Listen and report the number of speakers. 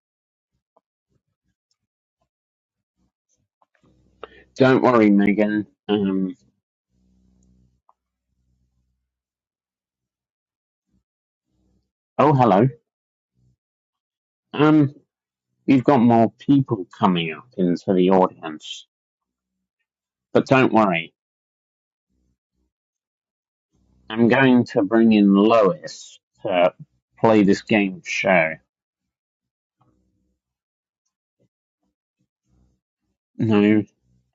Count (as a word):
one